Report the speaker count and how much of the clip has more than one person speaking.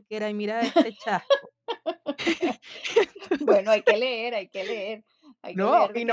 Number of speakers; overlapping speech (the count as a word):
two, about 17%